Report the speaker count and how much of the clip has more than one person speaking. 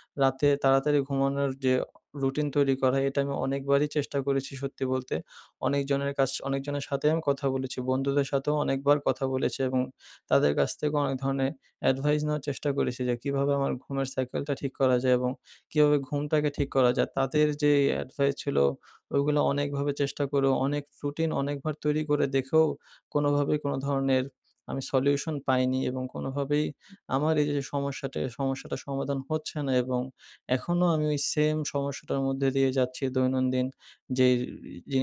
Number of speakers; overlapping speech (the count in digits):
1, no overlap